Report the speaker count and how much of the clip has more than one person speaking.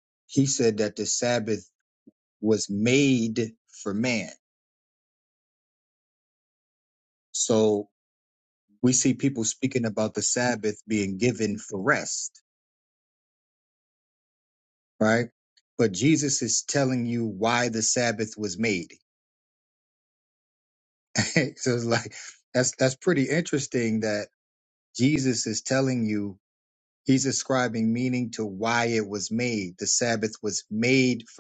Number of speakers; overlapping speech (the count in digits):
1, no overlap